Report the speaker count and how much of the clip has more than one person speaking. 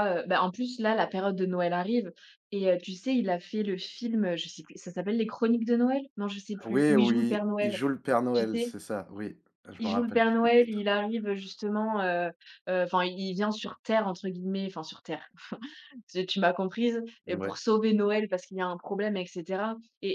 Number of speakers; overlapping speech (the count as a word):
two, about 14%